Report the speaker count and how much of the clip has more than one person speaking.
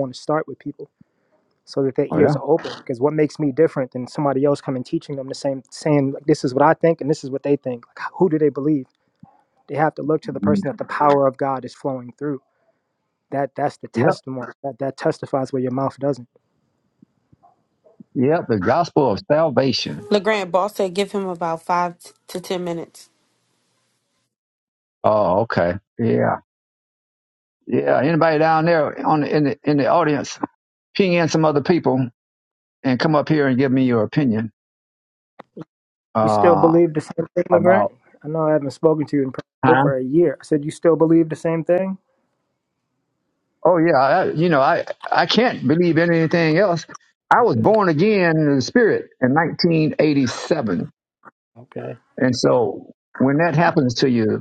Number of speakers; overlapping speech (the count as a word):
three, about 4%